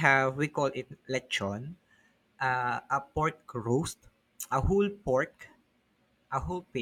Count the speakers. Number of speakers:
one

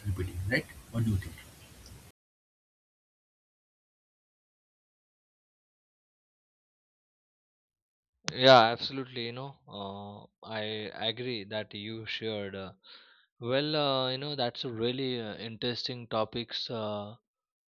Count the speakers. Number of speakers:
two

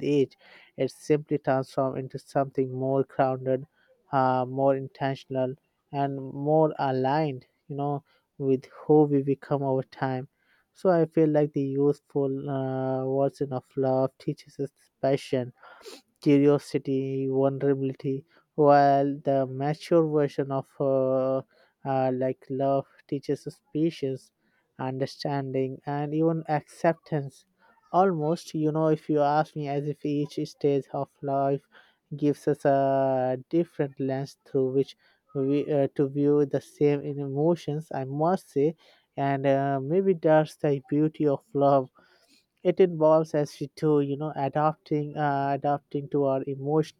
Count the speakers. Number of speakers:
one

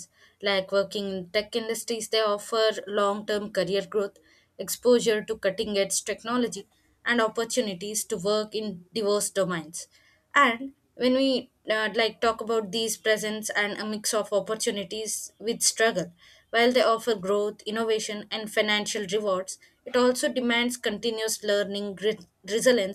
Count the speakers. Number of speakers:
one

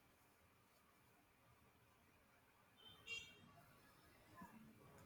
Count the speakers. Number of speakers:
zero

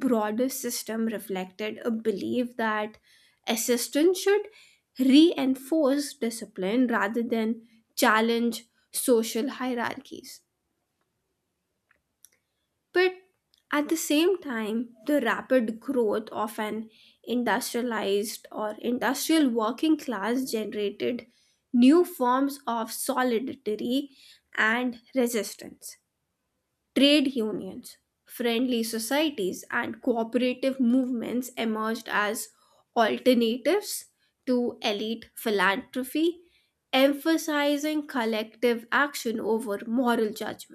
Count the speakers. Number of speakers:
one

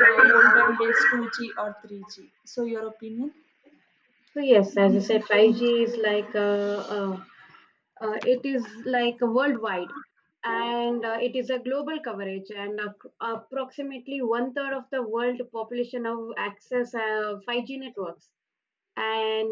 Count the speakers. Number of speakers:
two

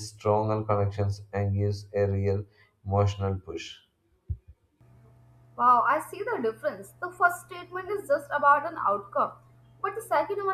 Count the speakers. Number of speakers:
two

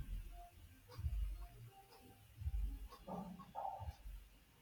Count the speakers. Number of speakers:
zero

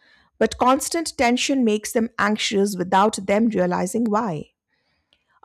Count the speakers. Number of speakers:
one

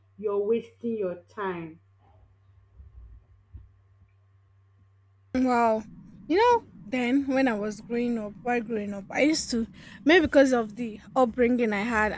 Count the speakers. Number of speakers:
two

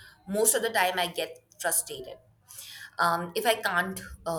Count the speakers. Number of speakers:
one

